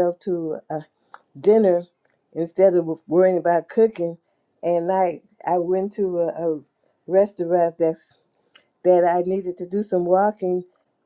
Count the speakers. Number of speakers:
one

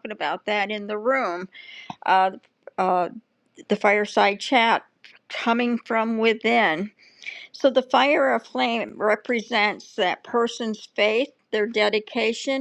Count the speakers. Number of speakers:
one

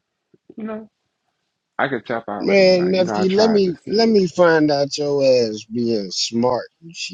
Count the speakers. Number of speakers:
two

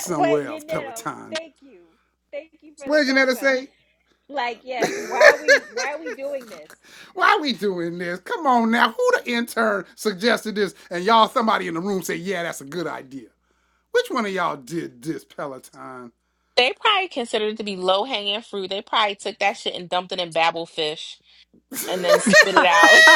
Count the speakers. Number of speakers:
three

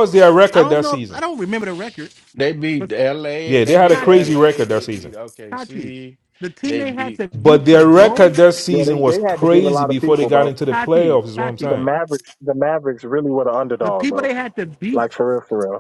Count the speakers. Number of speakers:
four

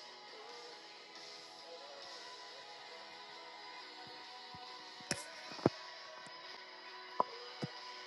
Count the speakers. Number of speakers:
zero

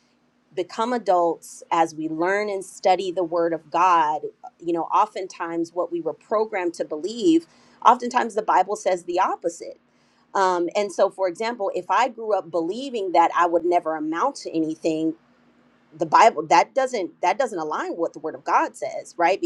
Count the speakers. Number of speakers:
one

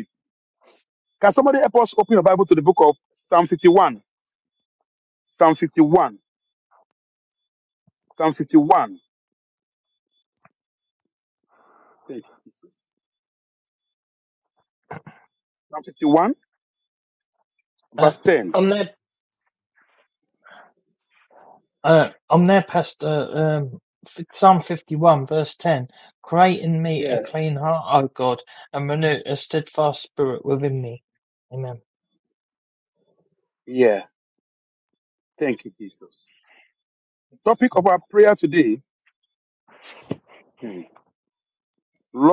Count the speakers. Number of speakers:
two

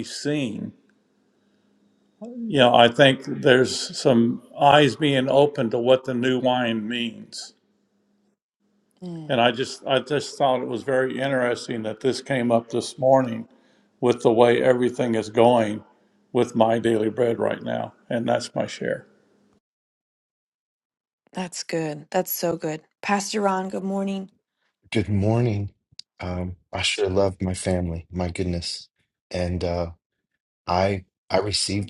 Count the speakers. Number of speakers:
three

